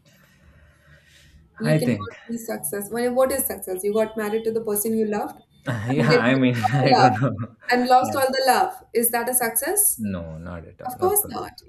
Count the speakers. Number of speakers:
2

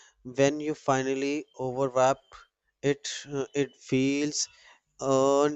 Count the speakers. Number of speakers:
1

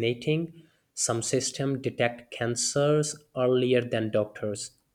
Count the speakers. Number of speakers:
1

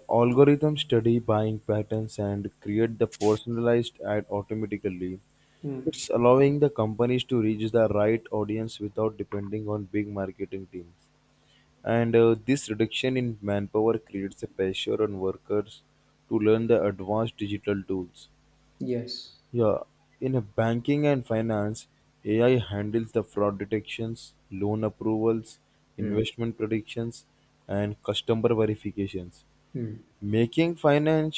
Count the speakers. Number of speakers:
2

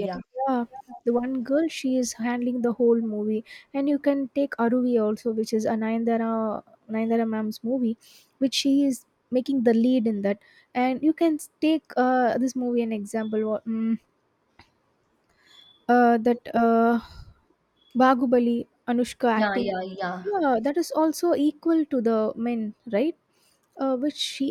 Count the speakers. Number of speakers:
2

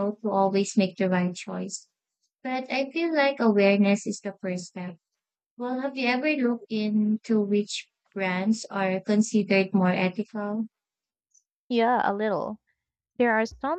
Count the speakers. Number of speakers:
2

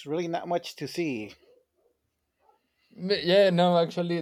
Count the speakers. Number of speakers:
2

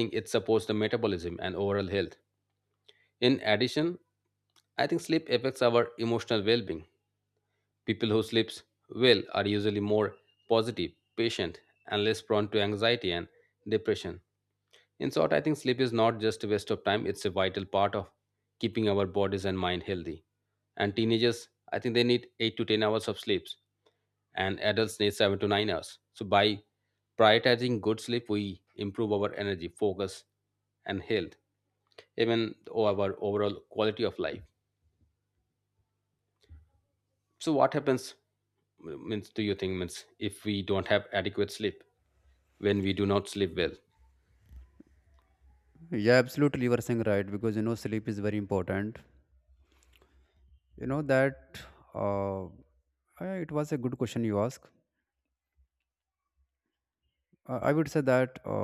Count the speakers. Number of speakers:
2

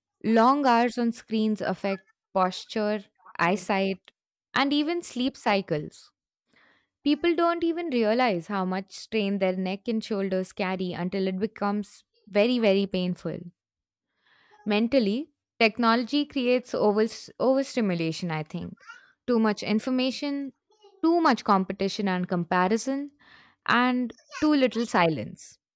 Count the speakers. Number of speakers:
1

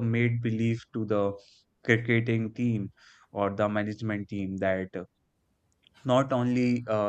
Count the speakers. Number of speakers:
1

